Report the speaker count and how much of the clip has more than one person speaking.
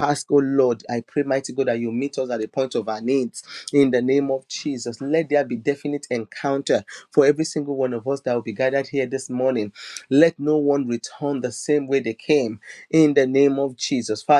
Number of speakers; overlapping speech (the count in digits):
1, no overlap